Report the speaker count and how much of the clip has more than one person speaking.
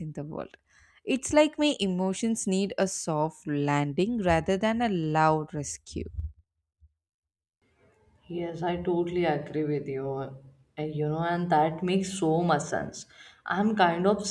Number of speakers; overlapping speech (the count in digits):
2, no overlap